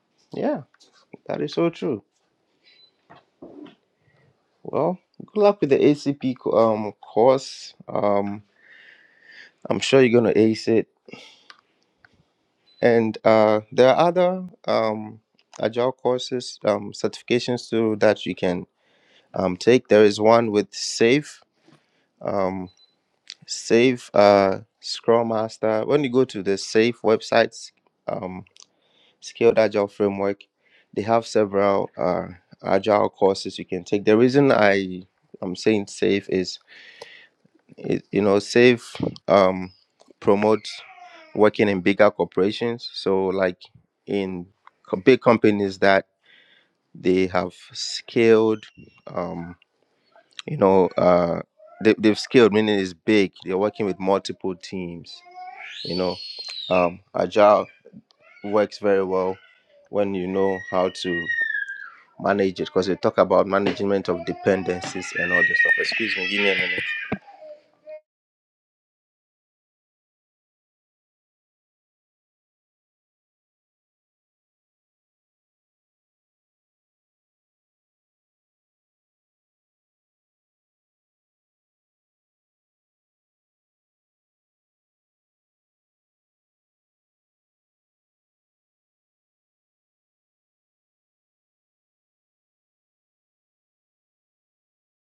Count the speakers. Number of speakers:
1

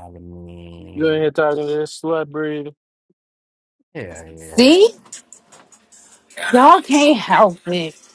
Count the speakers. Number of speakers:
3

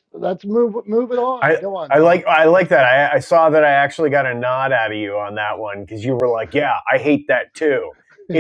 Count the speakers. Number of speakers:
2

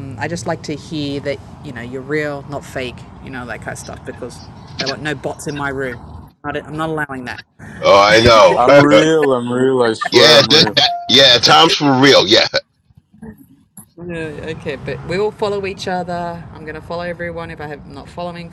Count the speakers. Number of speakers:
3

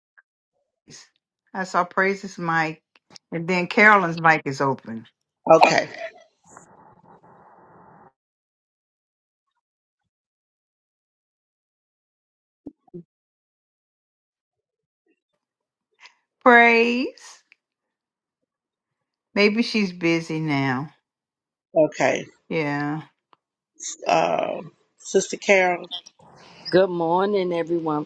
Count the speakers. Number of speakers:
3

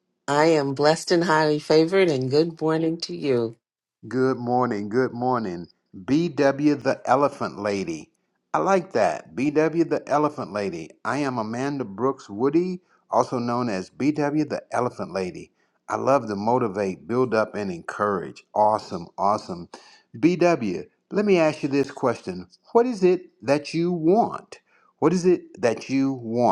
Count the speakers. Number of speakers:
2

